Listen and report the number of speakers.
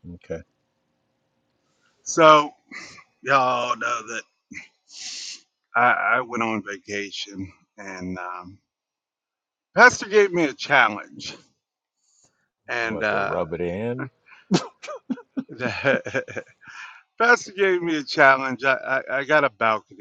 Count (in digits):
2